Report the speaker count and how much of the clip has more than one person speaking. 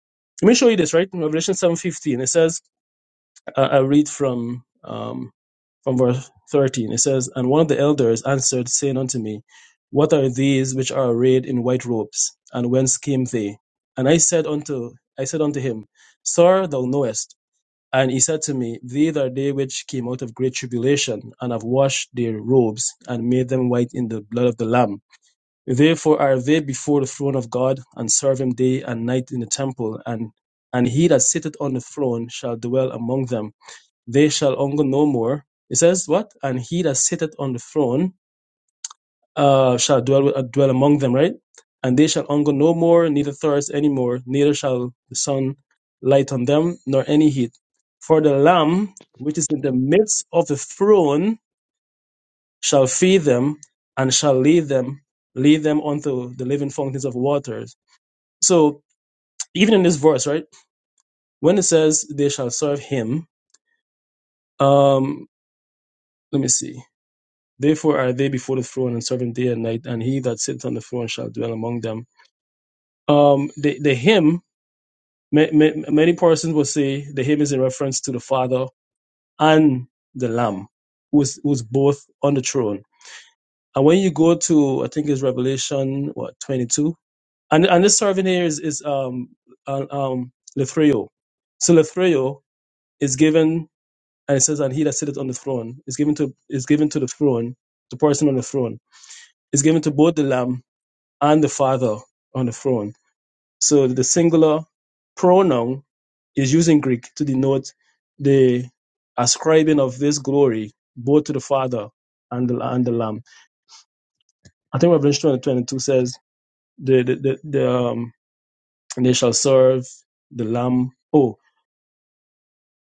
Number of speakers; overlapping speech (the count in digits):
1, no overlap